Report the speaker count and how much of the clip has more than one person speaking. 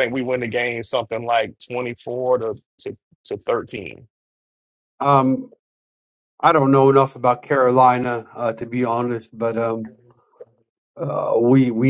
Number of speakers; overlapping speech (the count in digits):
2, no overlap